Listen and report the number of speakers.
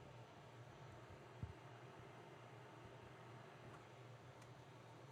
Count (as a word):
zero